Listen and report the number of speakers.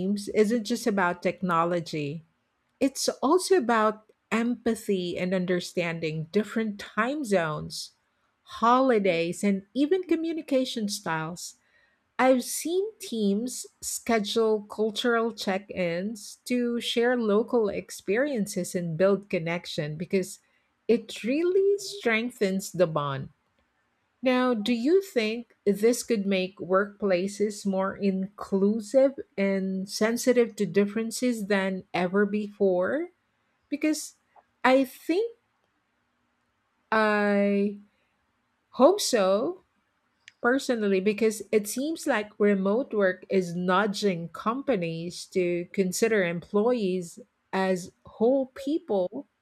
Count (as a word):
one